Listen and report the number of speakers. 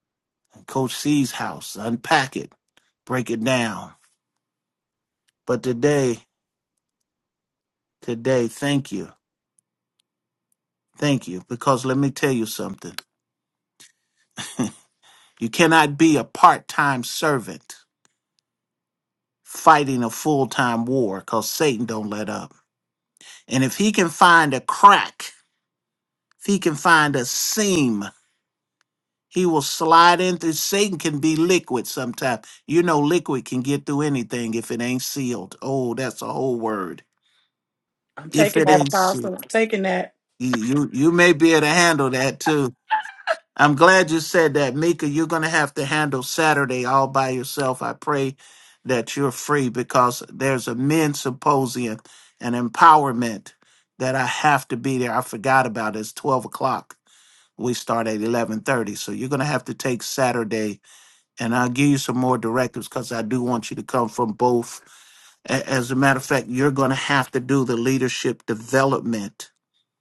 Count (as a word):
two